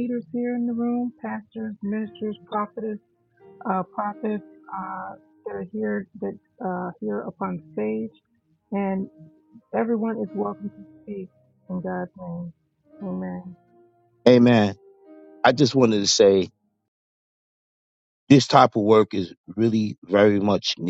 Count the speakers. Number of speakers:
two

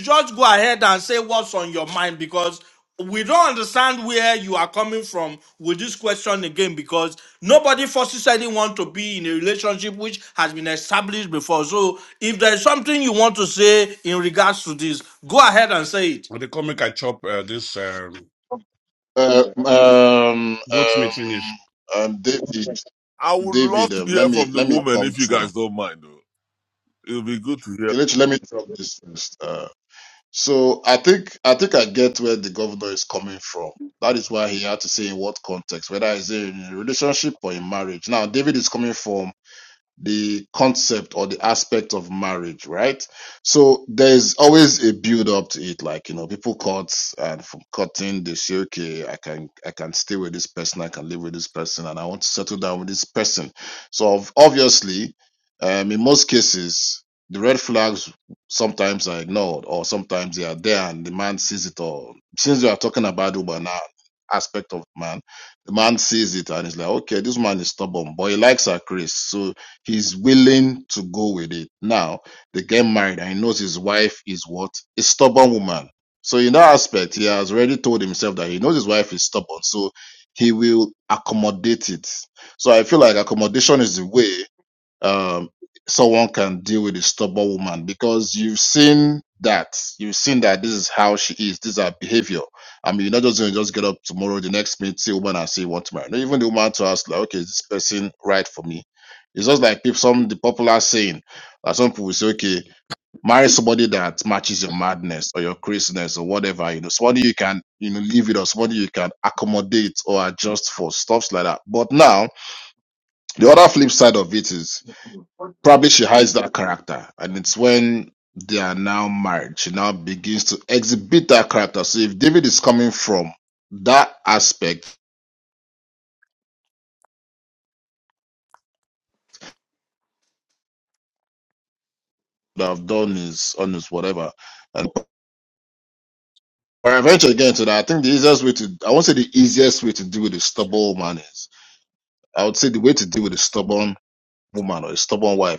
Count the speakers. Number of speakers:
four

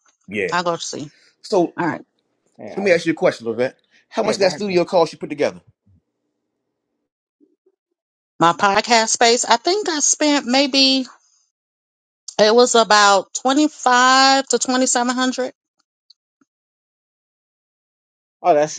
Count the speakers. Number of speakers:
three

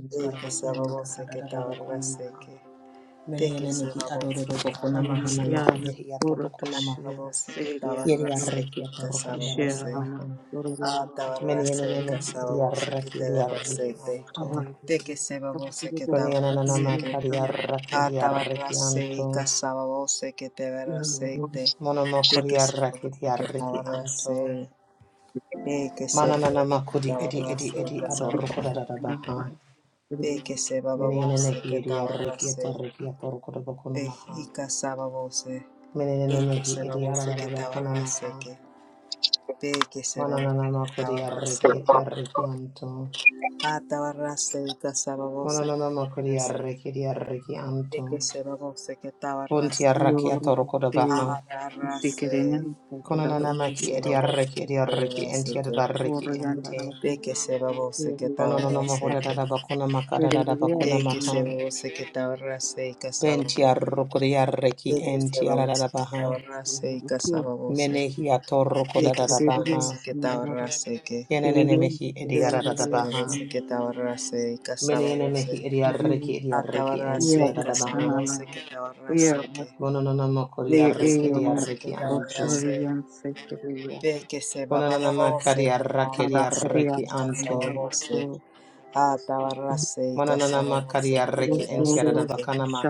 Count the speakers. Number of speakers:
three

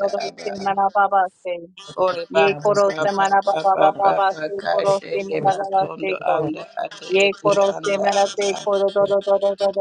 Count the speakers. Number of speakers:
two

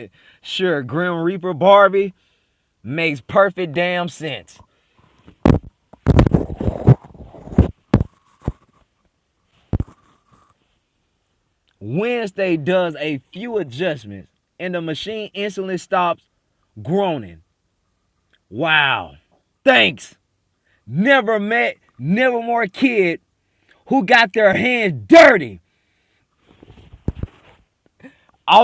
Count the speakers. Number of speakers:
one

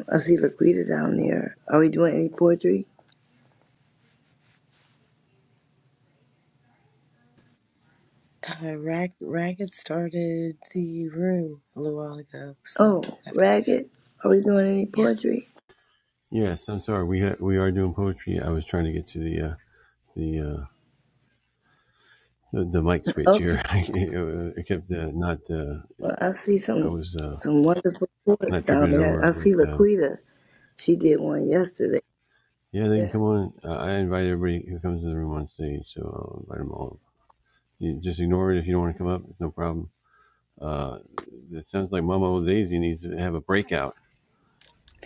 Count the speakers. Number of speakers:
three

